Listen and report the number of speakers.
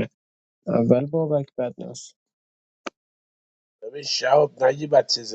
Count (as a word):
two